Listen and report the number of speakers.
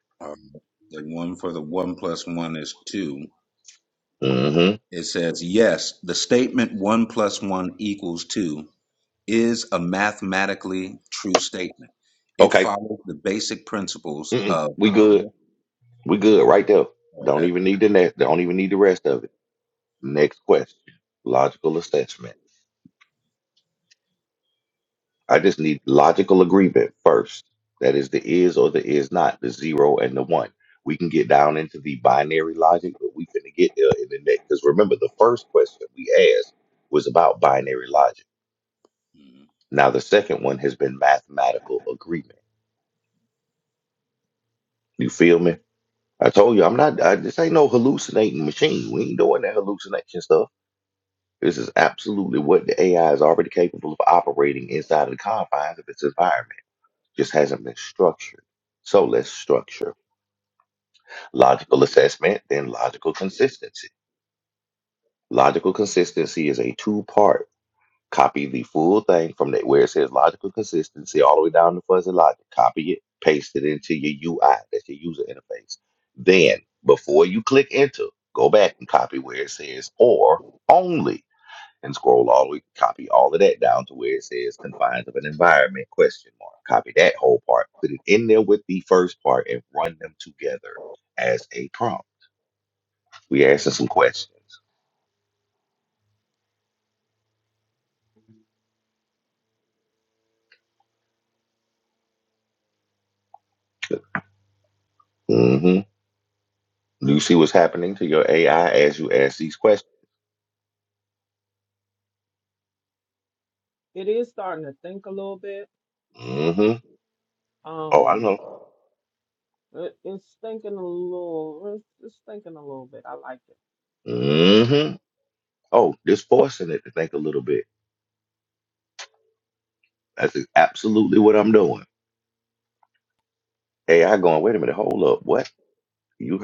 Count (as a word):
three